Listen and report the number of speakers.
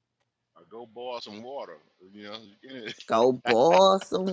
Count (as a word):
two